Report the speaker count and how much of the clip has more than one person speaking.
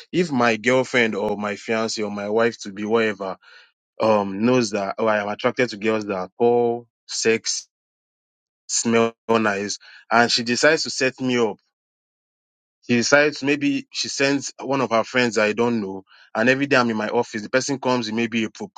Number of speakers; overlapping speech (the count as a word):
one, no overlap